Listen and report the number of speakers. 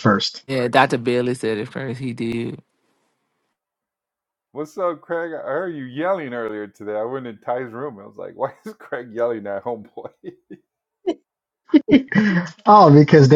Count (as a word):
three